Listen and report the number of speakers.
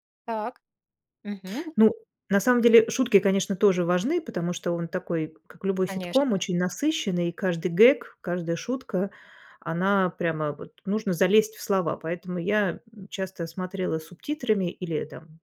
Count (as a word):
two